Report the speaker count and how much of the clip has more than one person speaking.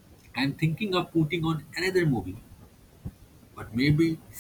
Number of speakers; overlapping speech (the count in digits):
1, no overlap